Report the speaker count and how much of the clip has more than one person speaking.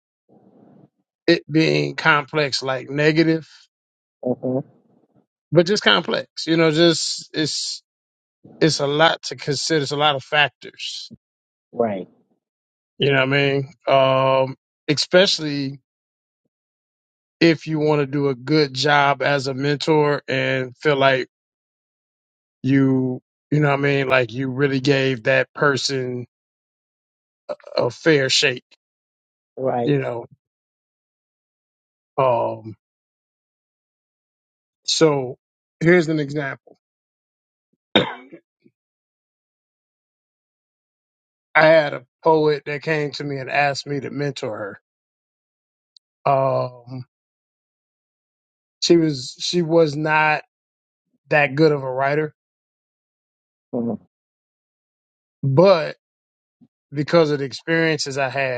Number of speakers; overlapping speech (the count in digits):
2, under 1%